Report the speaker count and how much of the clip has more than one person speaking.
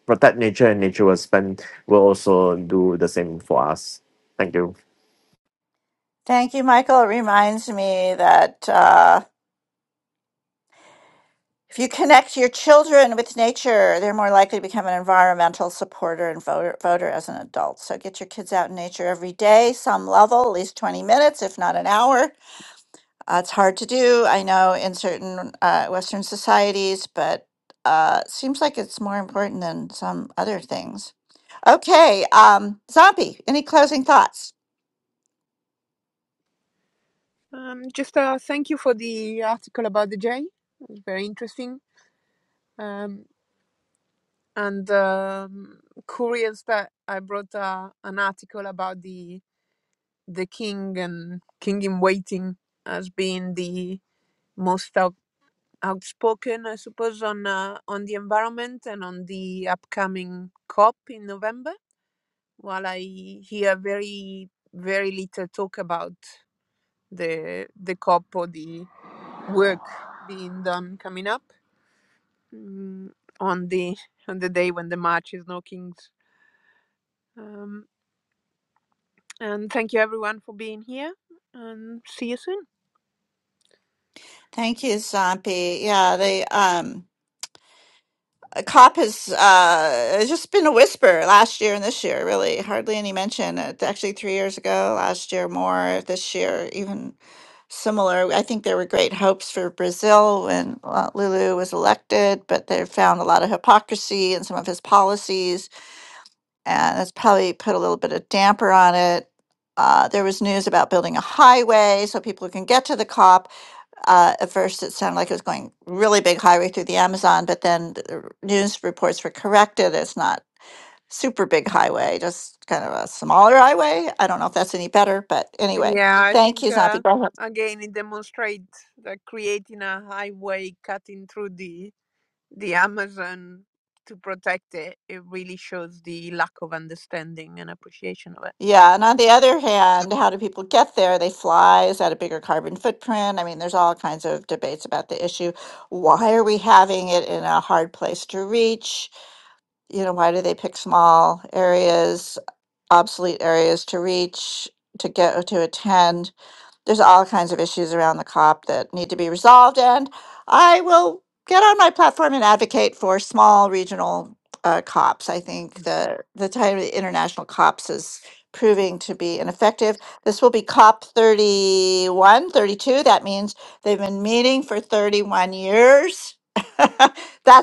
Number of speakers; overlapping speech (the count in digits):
3, under 1%